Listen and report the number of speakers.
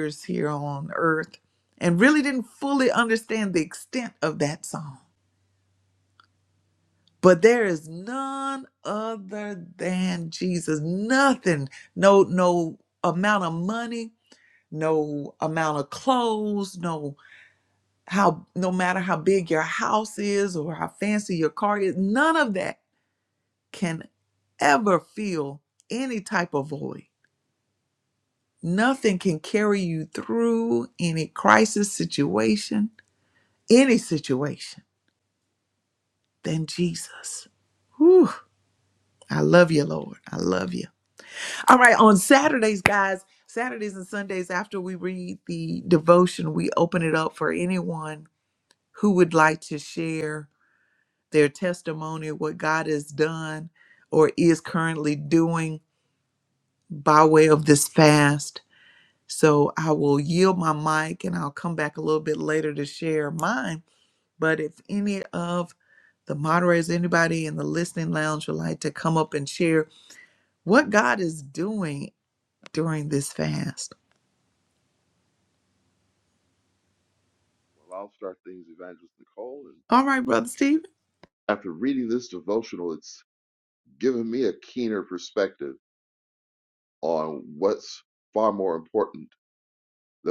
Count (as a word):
two